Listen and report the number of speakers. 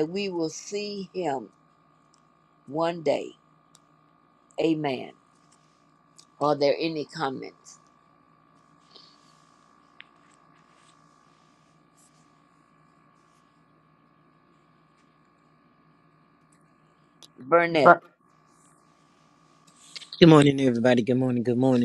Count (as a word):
two